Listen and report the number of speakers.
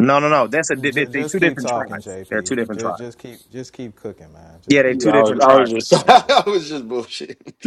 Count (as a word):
three